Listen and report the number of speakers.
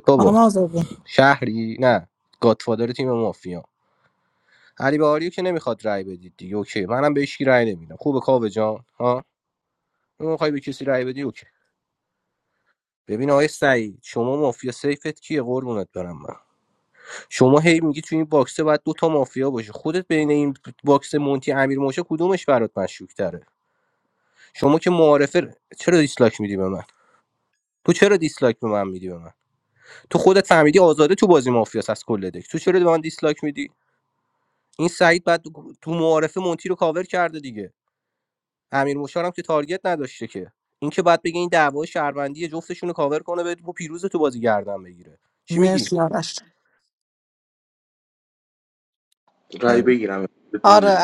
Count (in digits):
3